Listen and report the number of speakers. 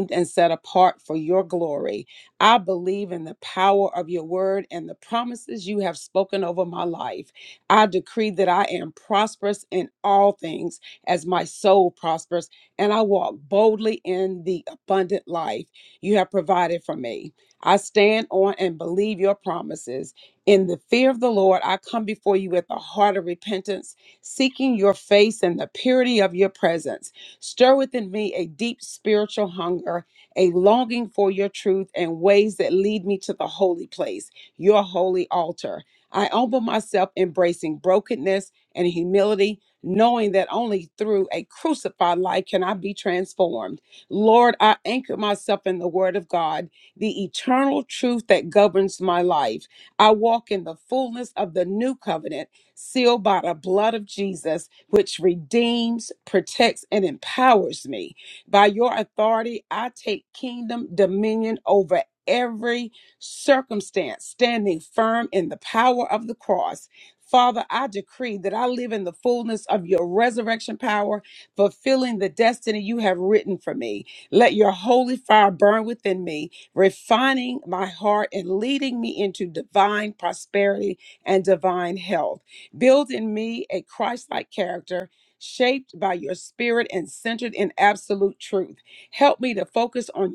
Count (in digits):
1